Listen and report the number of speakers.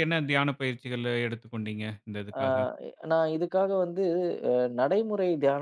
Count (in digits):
2